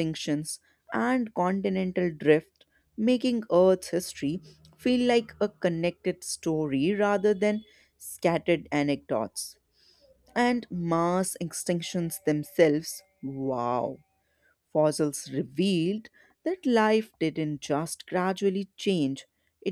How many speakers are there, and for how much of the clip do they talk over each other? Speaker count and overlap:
1, no overlap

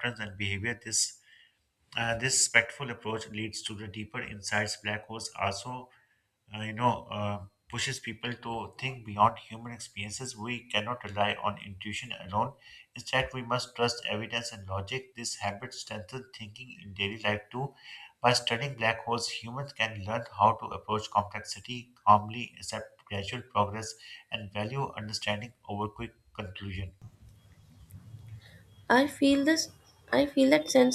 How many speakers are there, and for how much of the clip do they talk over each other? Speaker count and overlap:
2, no overlap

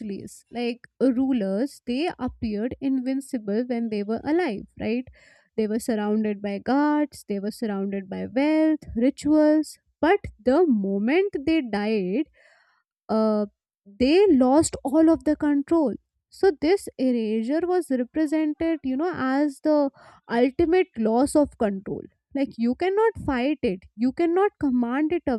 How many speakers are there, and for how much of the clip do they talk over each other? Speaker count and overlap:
1, no overlap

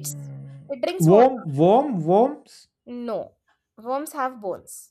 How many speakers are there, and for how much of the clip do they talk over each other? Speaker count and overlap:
2, about 7%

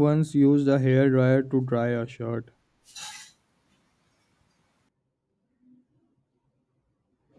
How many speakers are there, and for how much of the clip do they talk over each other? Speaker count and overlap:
1, no overlap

